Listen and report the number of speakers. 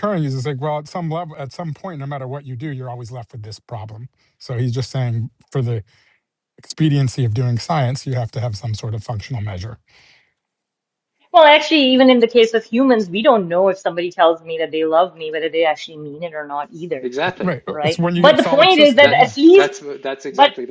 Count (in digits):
3